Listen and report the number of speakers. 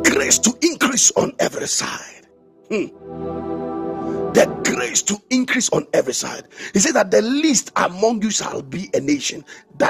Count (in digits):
1